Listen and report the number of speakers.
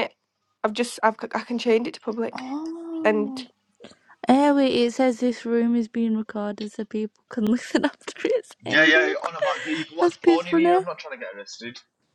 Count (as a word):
four